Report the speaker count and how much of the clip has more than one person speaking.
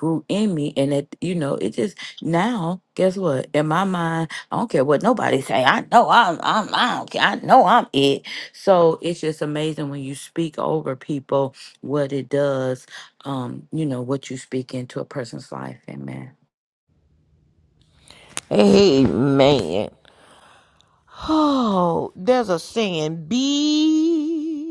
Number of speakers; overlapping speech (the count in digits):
2, no overlap